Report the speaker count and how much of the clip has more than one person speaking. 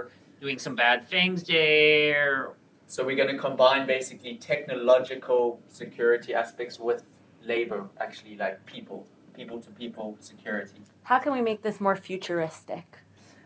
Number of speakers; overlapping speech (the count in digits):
3, no overlap